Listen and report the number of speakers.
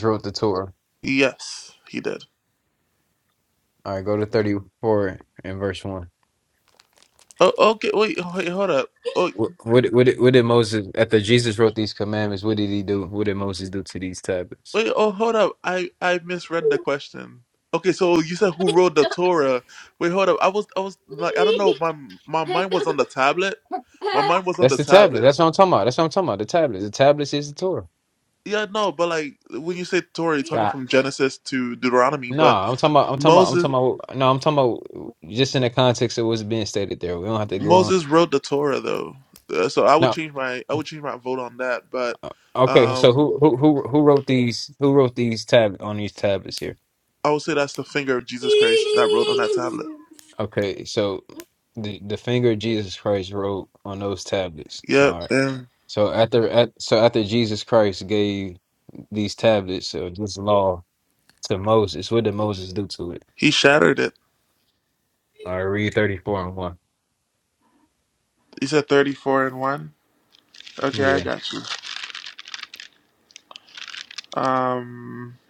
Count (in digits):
2